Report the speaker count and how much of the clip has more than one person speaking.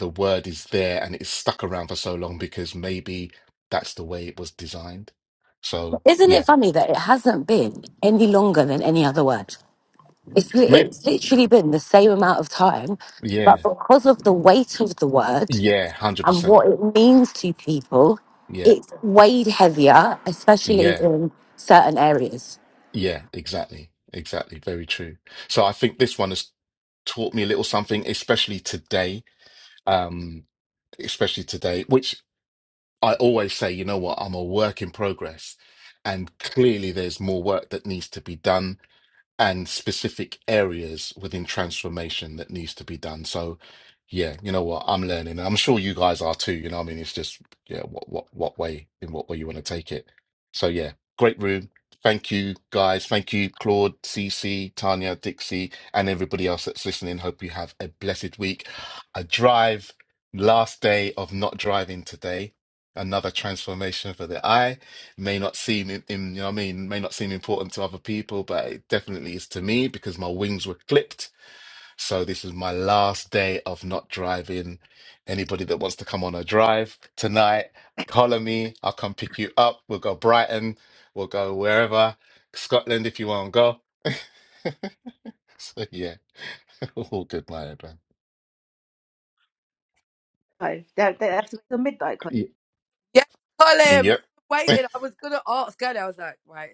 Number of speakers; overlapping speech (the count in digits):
4, about 2%